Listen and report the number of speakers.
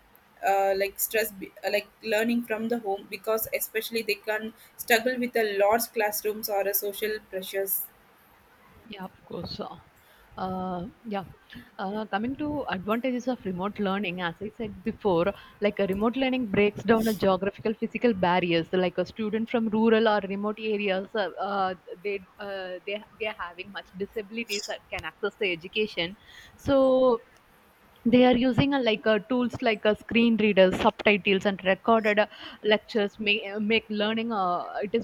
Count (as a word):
two